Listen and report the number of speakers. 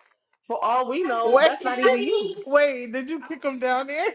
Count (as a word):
two